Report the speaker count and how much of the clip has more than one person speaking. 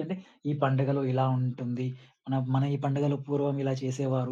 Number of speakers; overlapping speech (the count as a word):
one, no overlap